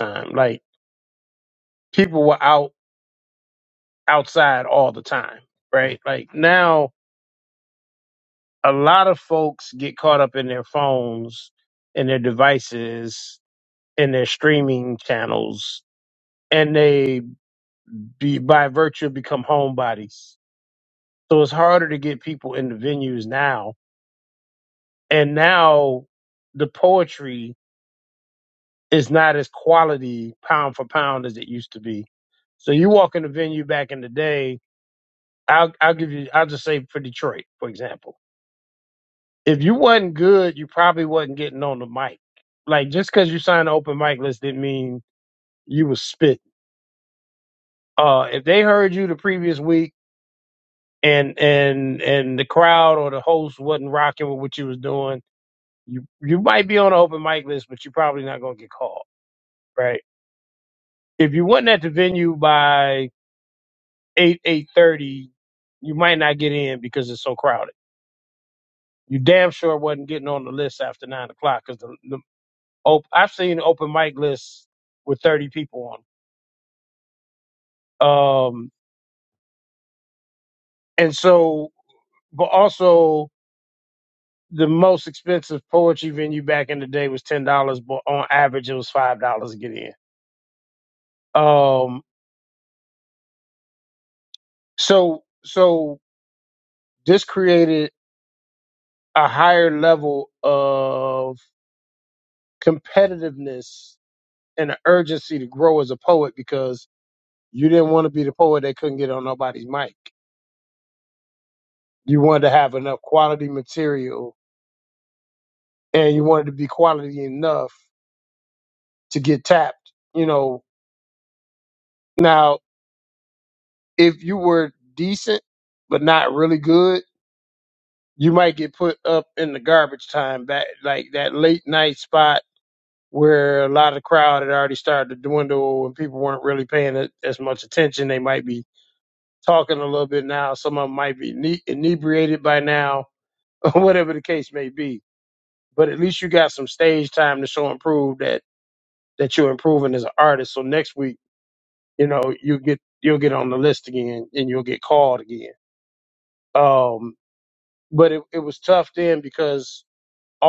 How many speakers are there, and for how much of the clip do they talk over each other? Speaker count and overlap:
one, no overlap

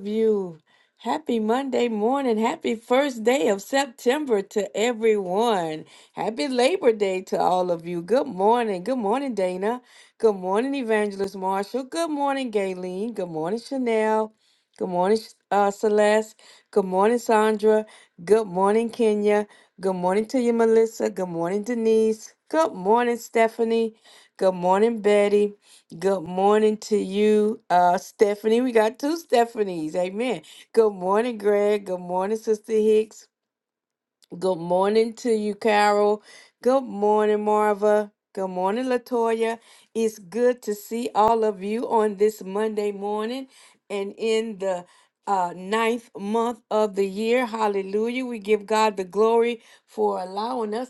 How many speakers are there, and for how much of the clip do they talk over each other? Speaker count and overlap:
one, no overlap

